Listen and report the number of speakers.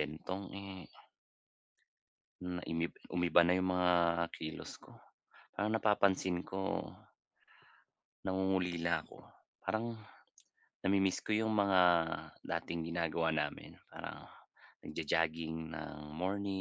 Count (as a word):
one